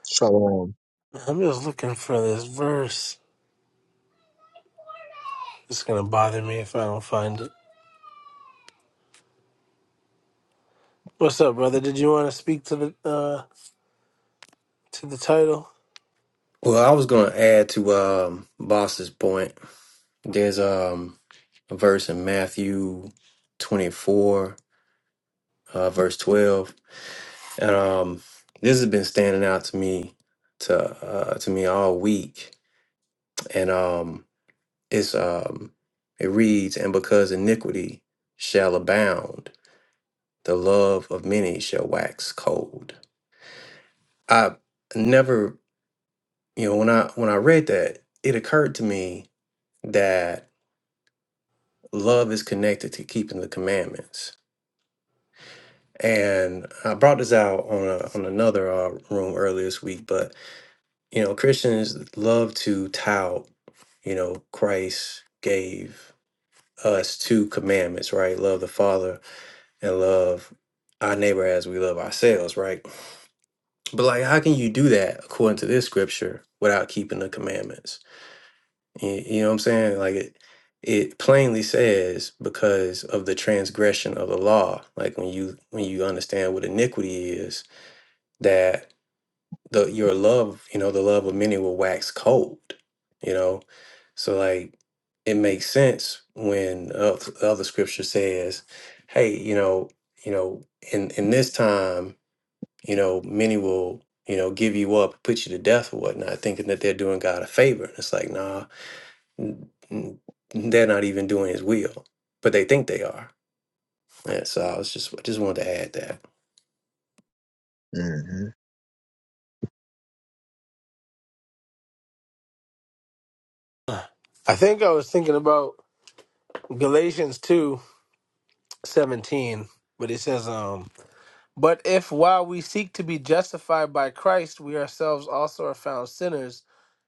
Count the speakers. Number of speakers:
3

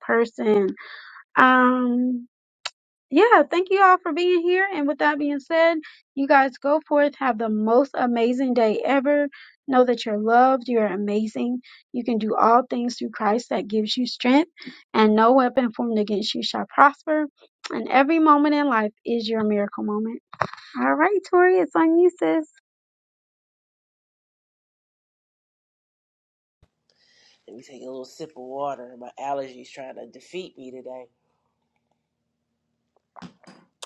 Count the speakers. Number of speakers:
2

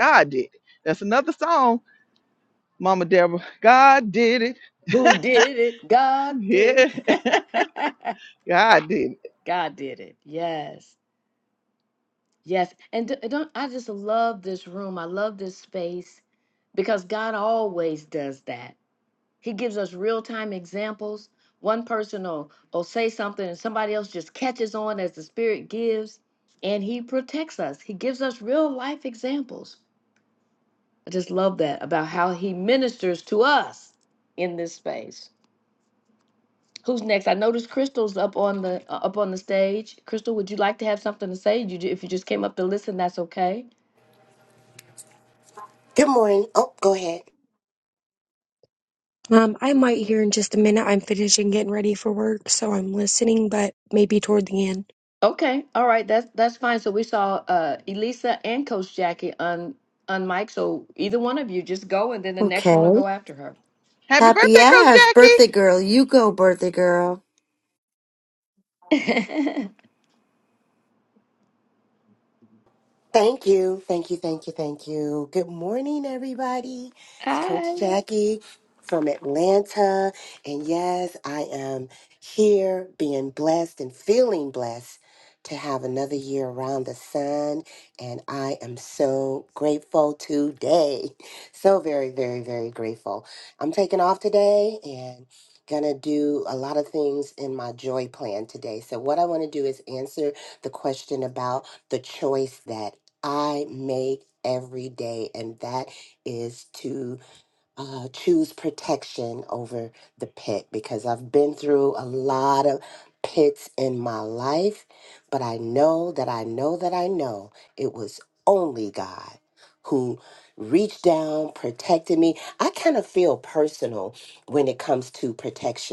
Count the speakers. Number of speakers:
5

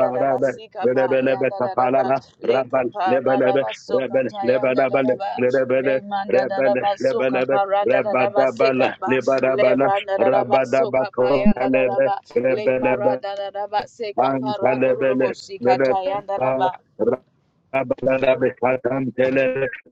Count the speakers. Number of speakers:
2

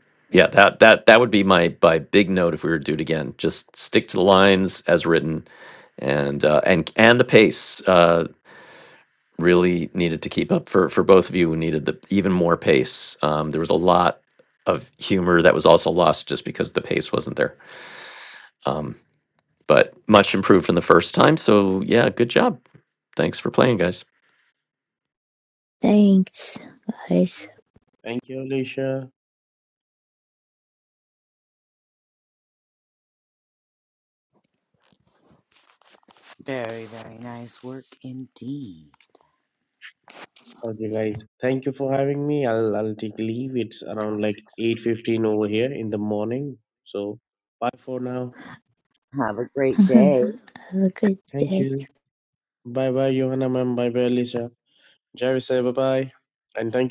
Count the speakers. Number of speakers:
4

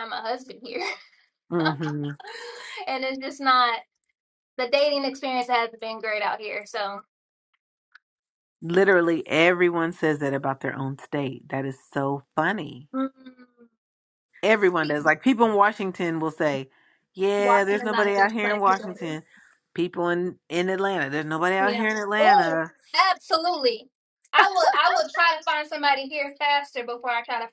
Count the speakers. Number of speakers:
2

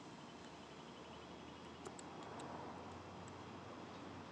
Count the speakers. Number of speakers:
0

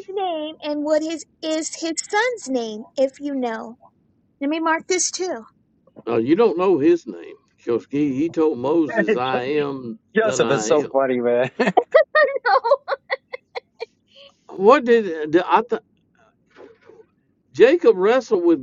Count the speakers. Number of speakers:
3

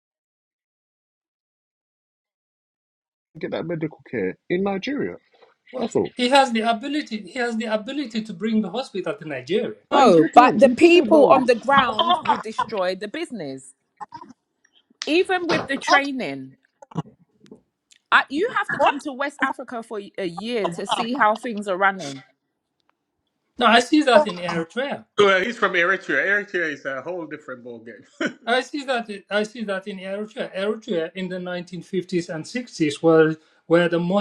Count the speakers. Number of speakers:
4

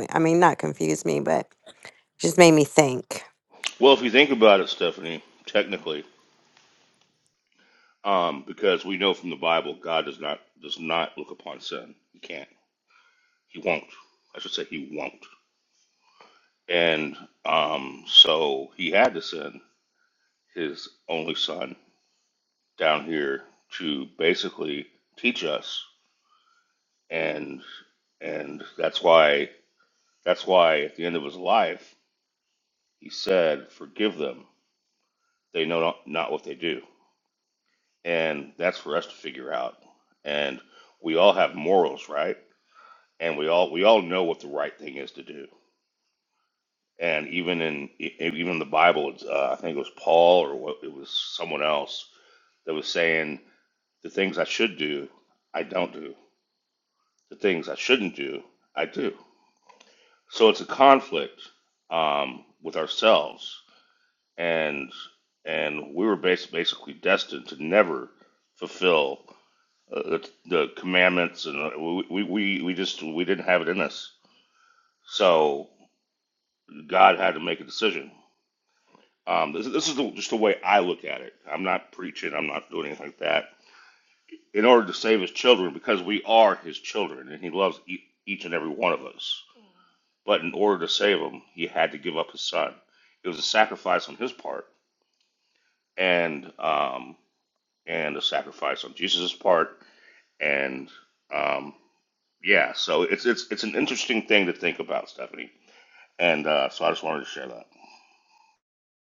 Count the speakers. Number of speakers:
2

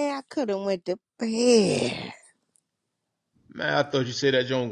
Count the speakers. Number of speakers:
2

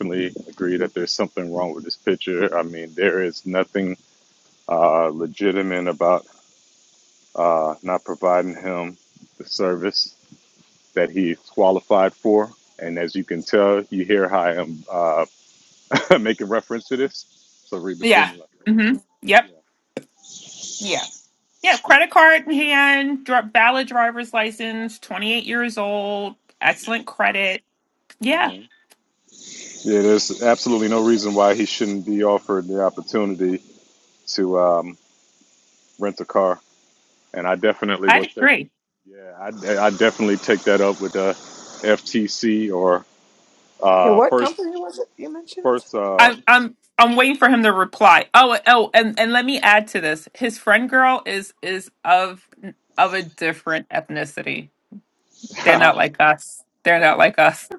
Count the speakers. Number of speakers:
3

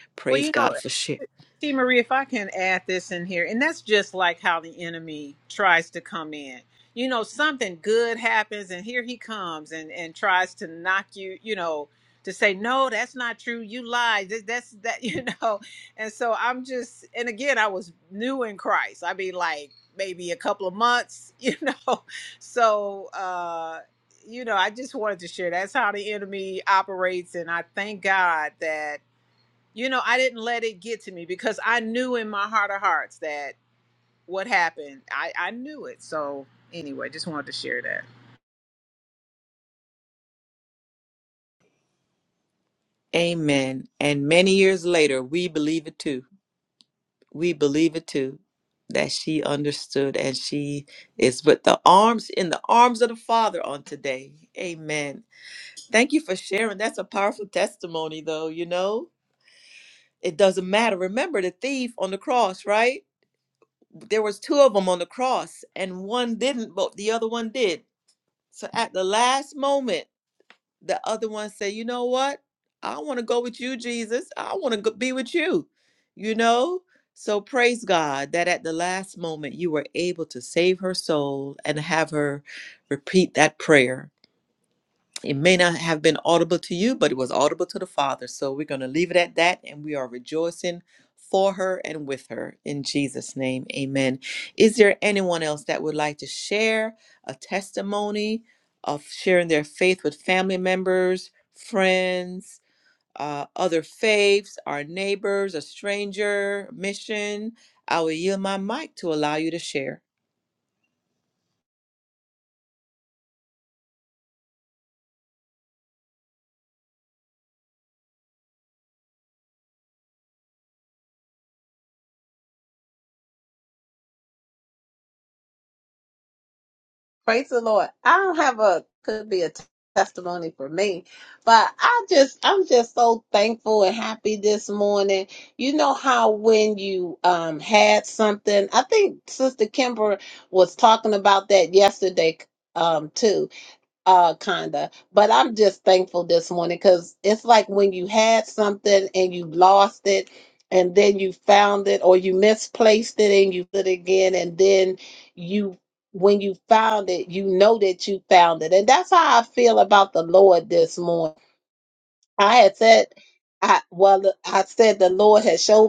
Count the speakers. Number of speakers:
3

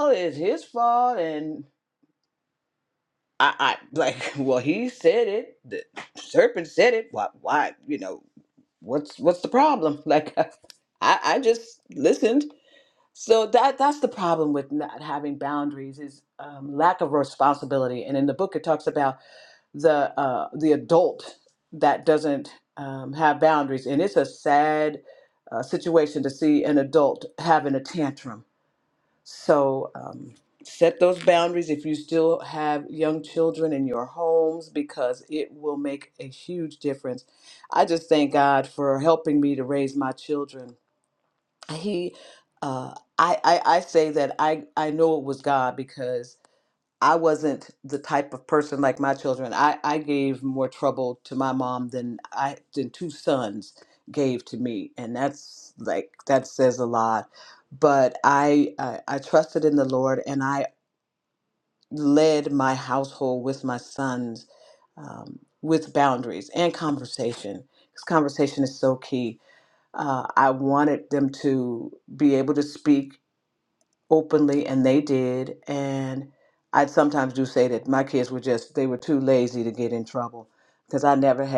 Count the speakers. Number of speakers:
1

